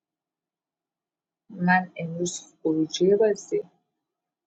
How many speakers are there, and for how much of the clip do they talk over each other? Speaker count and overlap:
1, no overlap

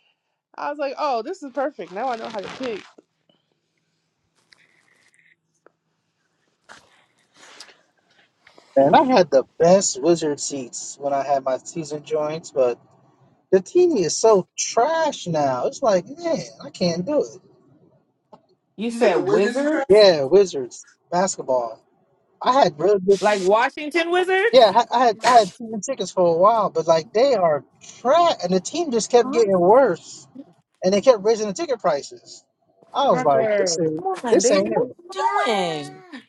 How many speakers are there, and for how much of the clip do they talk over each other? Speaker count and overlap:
3, about 8%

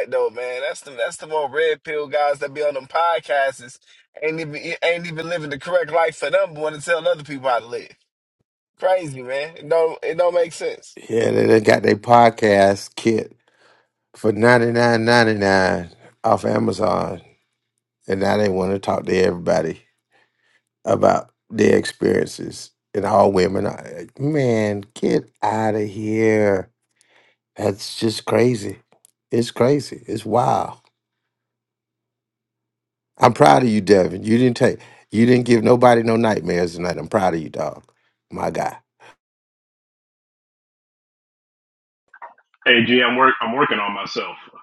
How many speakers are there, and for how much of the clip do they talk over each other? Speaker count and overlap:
3, no overlap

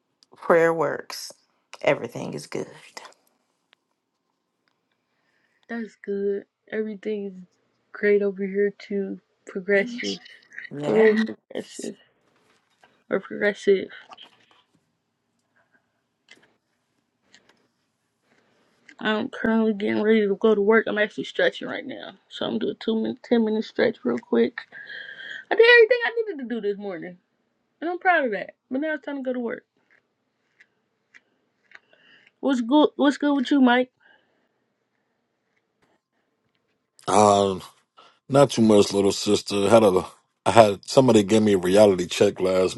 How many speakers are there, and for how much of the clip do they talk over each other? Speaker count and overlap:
3, about 1%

